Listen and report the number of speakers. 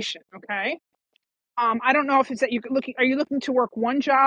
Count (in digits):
1